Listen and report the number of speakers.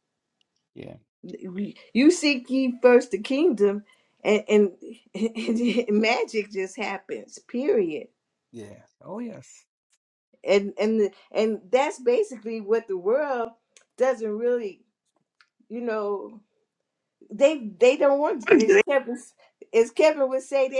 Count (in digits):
2